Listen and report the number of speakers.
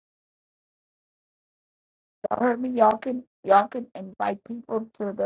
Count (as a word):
one